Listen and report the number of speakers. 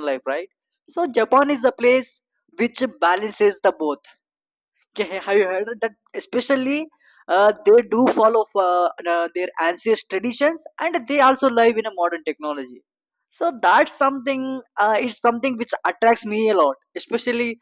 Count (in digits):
1